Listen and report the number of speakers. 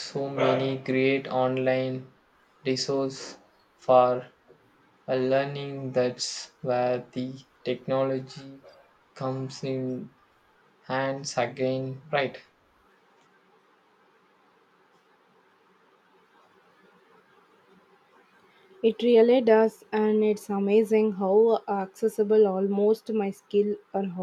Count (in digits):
2